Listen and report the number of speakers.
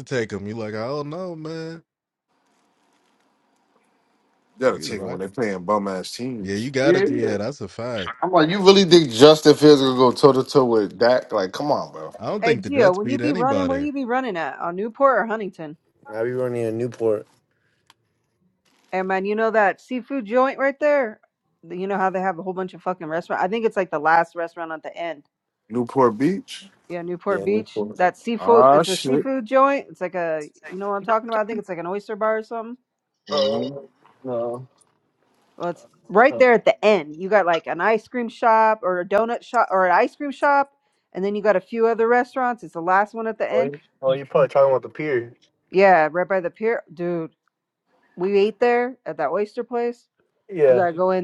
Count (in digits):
5